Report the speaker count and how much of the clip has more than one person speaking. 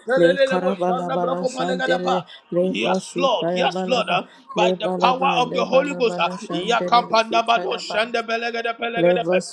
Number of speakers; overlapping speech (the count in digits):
2, about 74%